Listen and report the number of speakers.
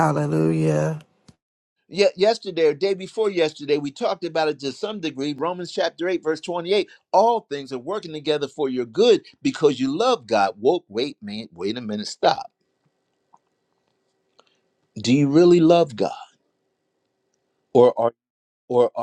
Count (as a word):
two